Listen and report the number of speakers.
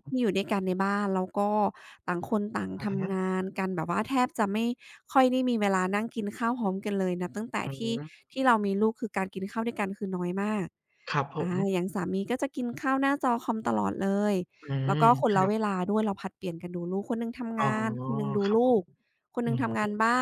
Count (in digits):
2